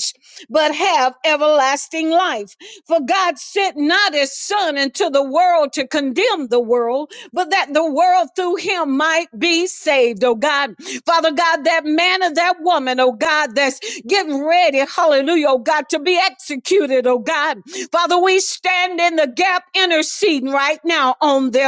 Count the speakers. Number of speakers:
1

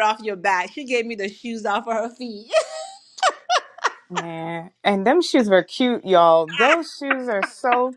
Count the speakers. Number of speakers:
2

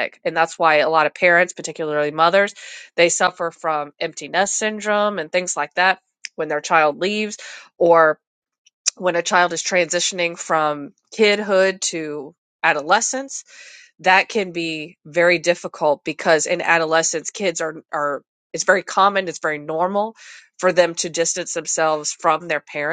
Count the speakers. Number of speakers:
1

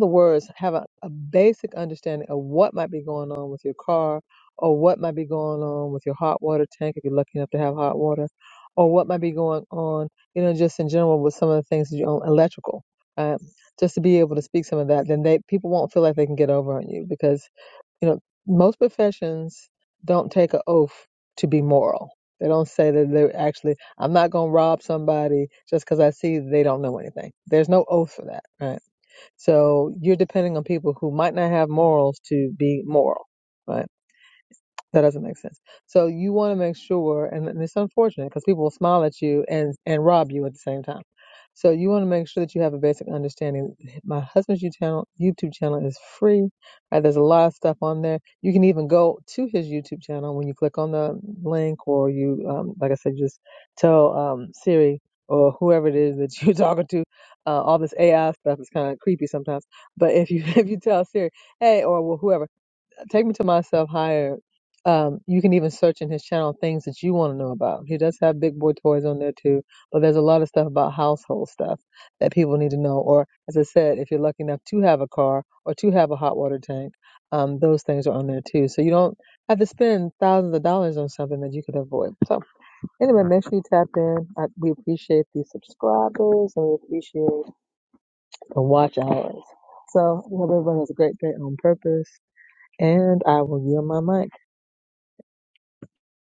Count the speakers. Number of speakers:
1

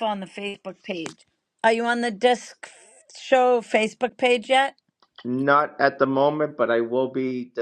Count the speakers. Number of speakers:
2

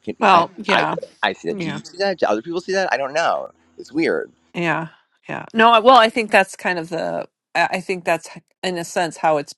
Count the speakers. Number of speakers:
2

